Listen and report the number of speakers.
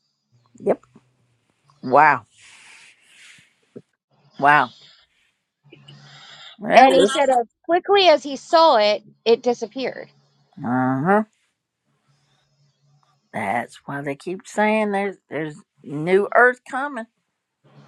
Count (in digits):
2